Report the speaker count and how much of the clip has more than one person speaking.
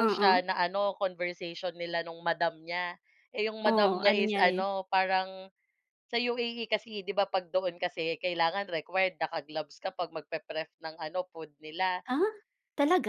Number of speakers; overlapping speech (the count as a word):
two, about 11%